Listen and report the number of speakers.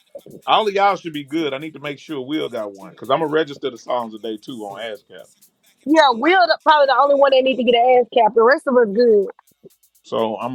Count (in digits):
2